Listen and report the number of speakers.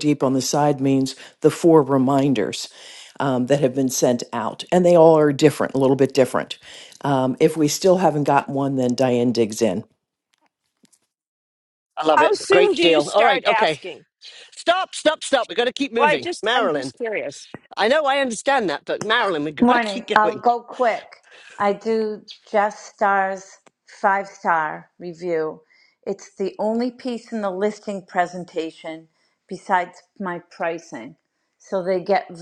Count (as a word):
four